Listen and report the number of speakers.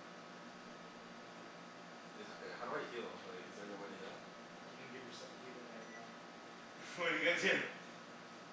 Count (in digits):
2